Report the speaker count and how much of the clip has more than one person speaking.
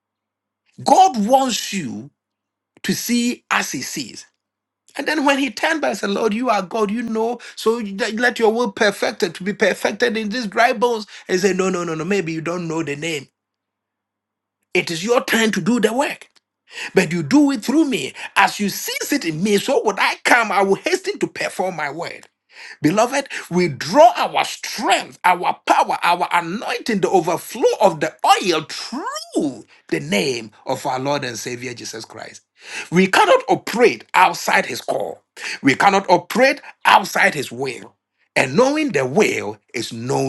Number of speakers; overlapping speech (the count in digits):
1, no overlap